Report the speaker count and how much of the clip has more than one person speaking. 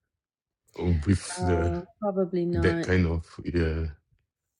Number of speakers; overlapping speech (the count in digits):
2, about 18%